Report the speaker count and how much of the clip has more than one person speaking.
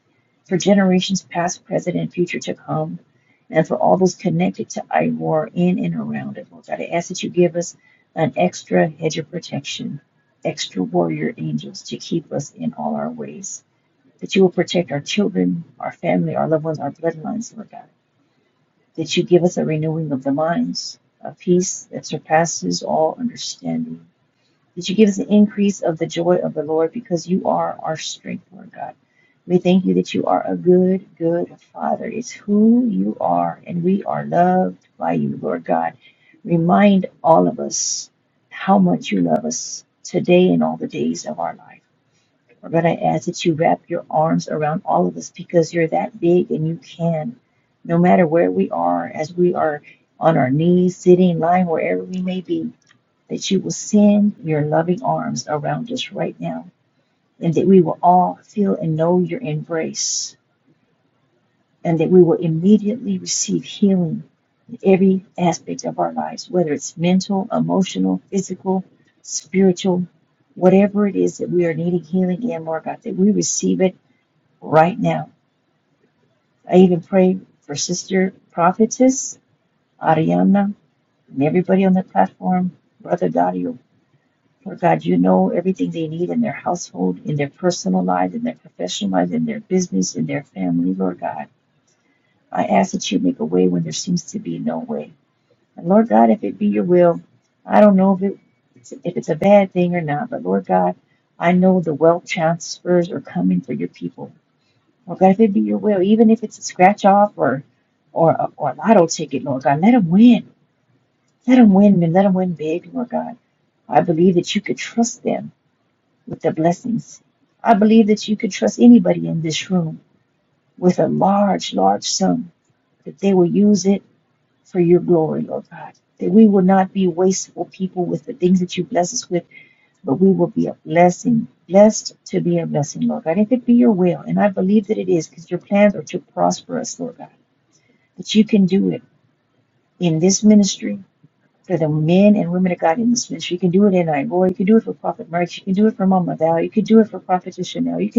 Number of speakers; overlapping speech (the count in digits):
1, no overlap